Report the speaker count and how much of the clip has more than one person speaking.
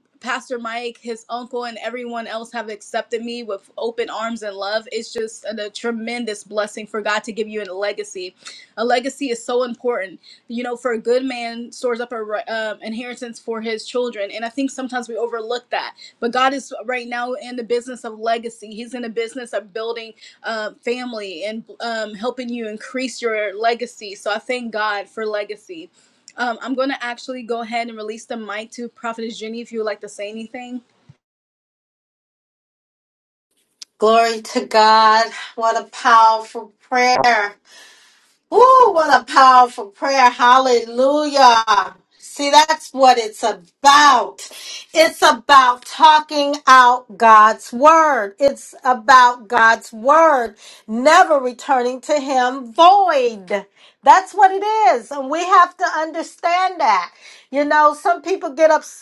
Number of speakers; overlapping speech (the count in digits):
2, no overlap